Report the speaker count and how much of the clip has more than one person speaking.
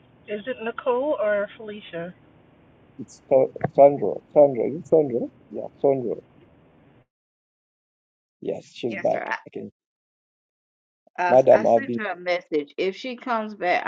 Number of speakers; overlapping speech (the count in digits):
3, about 9%